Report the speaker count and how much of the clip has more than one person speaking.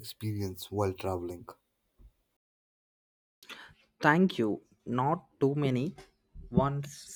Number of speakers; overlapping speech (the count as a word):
two, no overlap